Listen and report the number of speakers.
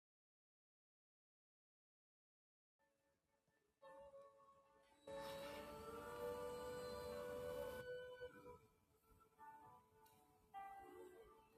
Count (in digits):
0